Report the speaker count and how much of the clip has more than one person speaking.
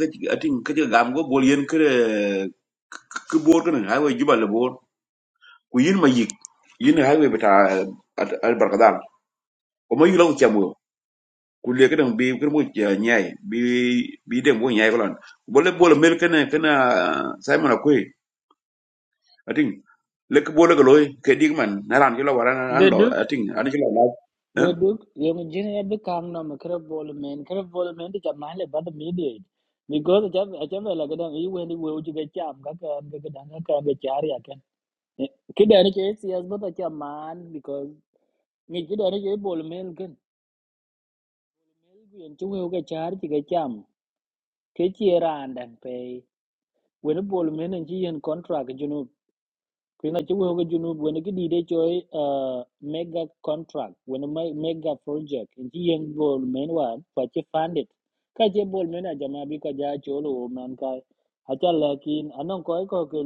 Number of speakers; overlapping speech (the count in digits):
2, about 1%